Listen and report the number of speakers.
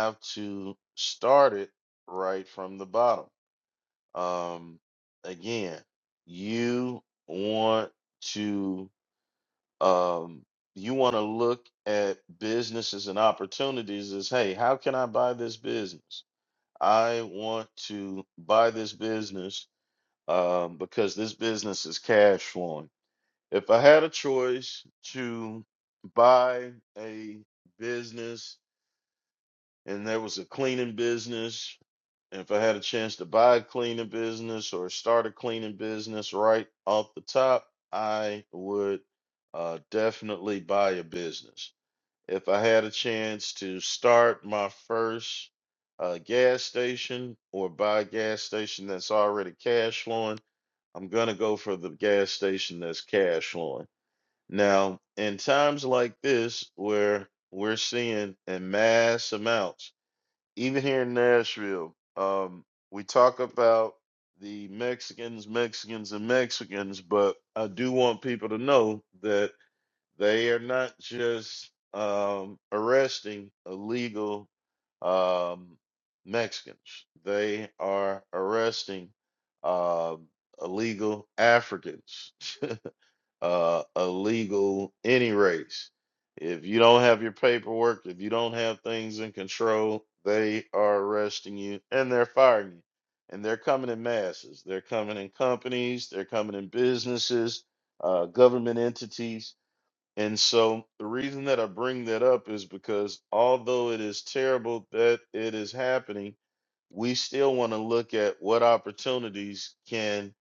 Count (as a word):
one